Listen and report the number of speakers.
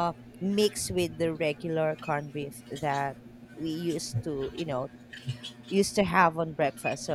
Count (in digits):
1